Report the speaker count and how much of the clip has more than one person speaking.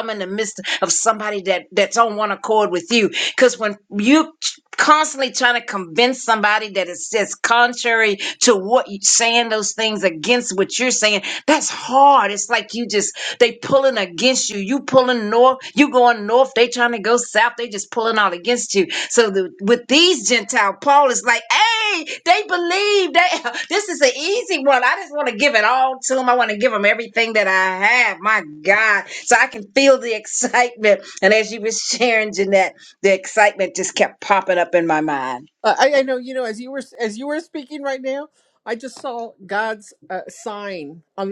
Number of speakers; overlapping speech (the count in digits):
2, no overlap